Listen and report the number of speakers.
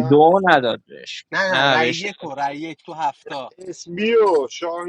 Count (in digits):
3